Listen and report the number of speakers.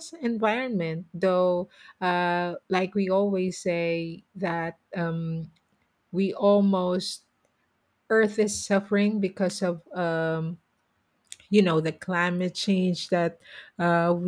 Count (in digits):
1